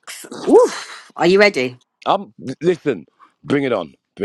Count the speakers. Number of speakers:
2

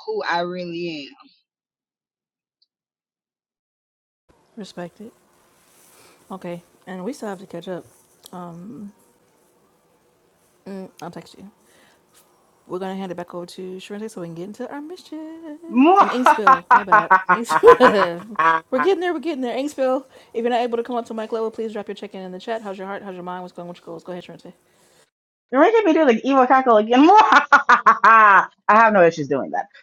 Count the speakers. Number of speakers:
3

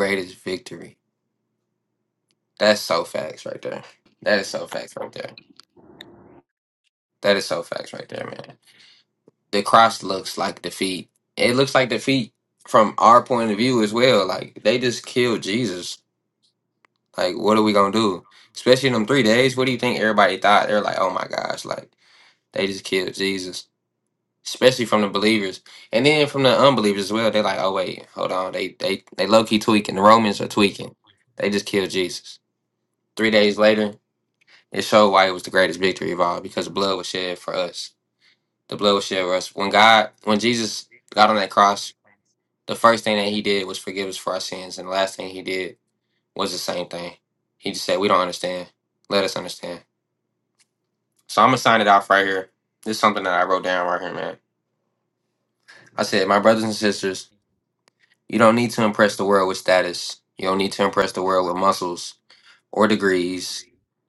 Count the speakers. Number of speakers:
1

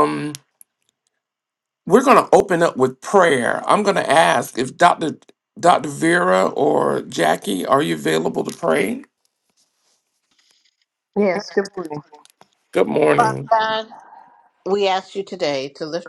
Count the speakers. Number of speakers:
2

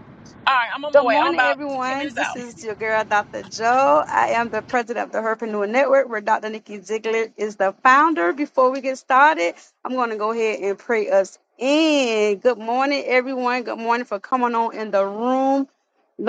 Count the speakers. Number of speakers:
2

